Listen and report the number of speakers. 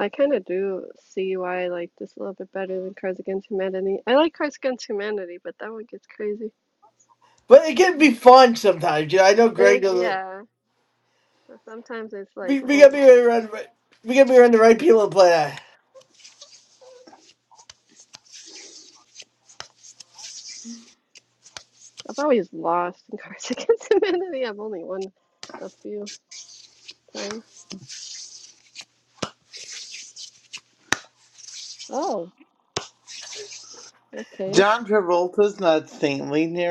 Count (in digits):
3